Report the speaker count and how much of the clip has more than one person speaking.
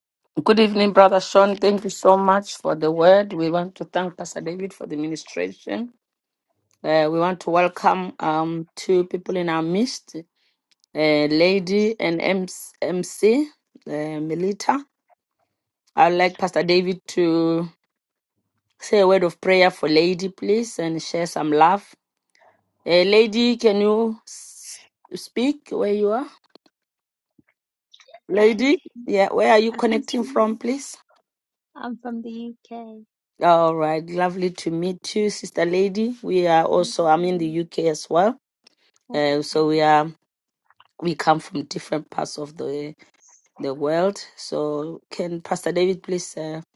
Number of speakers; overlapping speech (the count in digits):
2, about 5%